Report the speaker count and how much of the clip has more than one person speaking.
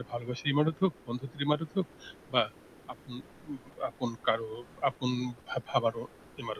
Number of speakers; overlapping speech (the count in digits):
1, no overlap